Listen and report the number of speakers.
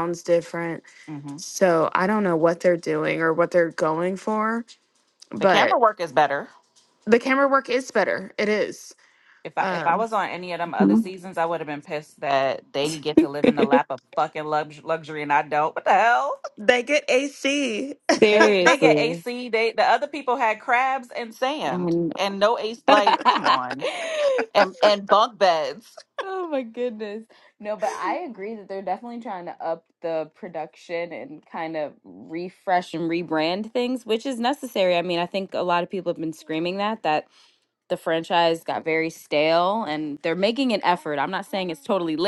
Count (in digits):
3